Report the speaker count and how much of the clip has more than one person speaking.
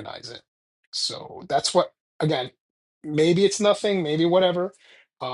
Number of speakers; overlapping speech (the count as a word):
one, no overlap